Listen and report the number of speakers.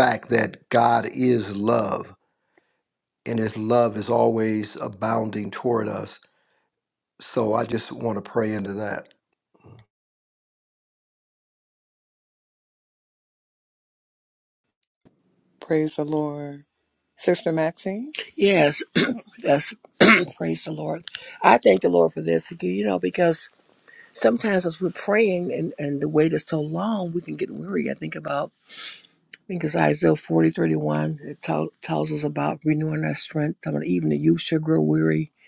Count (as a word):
three